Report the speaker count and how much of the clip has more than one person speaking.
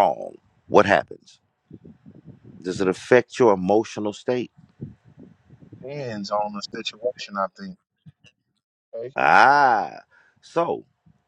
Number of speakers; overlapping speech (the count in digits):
2, no overlap